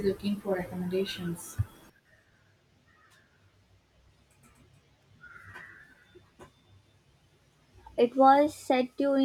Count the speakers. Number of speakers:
two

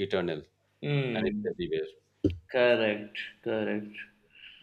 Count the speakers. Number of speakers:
two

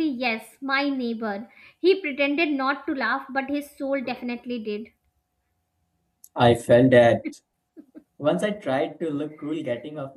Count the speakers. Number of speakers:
two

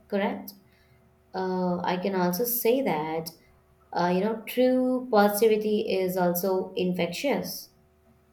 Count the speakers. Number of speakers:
one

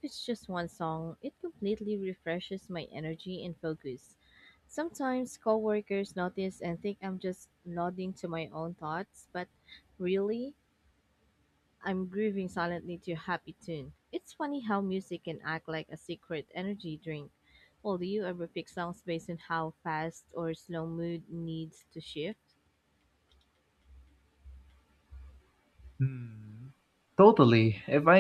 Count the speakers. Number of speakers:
two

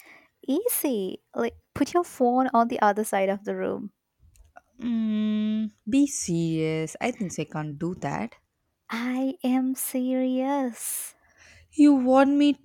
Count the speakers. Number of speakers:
two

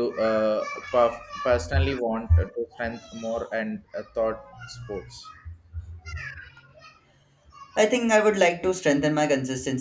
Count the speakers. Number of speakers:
two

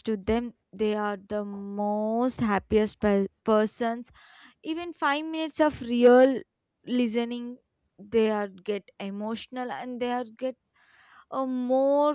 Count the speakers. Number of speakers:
one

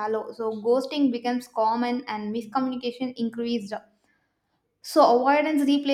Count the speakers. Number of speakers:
one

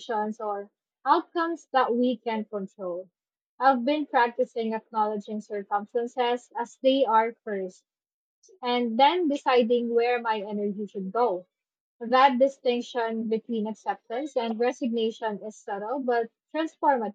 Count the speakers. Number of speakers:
one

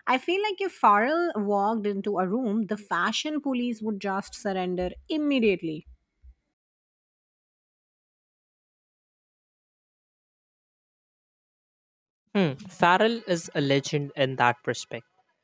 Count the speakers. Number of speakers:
two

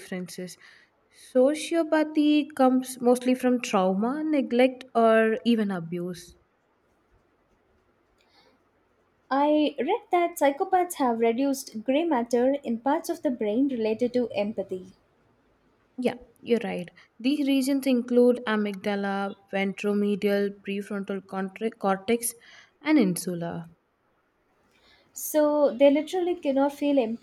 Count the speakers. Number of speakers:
two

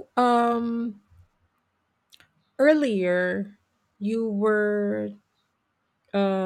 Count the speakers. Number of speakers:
one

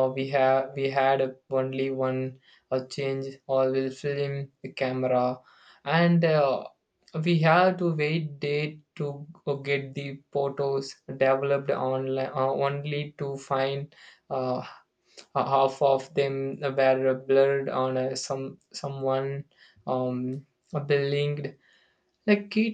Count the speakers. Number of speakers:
one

